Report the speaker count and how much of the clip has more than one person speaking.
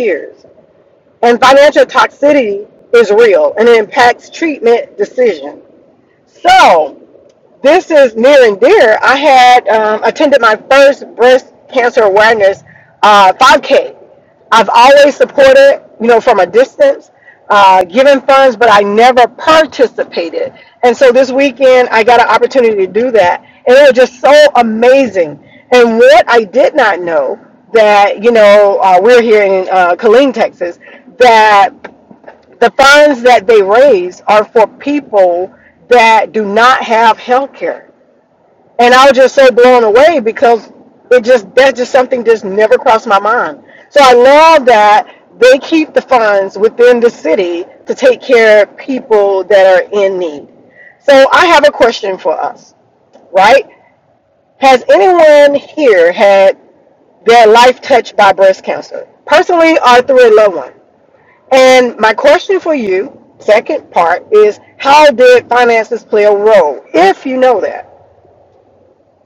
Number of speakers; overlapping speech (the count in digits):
1, no overlap